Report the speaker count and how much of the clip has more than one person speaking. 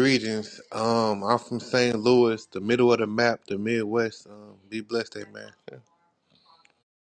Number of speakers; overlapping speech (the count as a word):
one, no overlap